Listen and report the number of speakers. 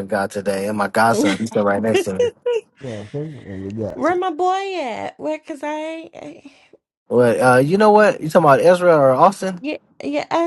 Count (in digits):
3